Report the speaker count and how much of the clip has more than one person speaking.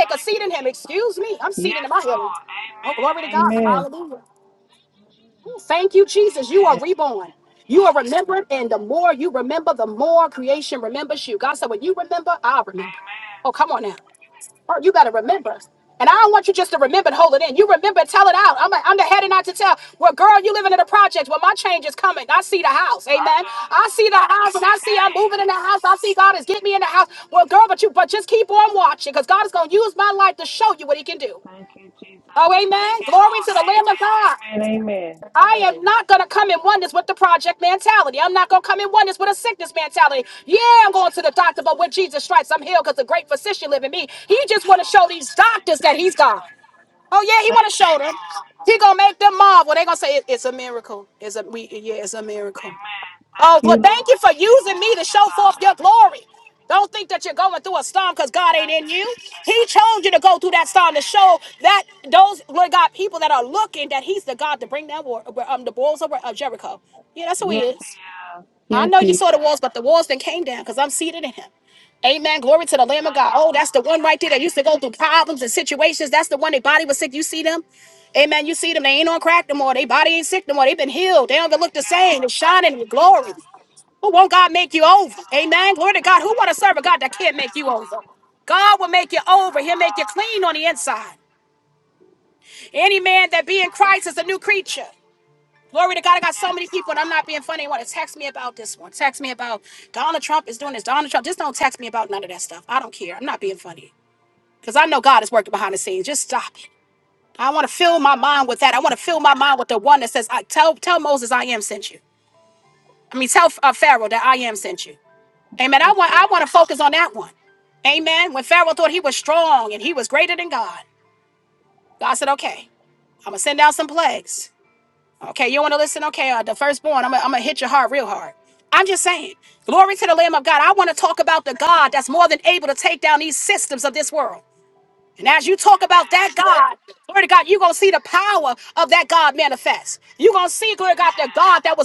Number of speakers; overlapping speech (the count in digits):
2, about 20%